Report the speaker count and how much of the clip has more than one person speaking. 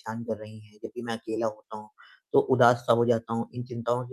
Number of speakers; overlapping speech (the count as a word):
one, no overlap